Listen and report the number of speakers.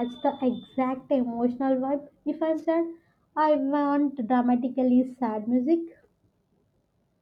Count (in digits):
1